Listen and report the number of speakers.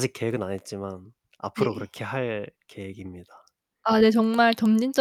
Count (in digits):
2